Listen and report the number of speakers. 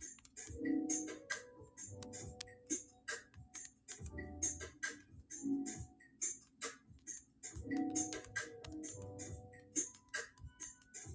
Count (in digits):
0